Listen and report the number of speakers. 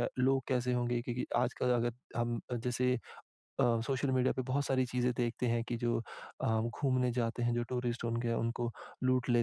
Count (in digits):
1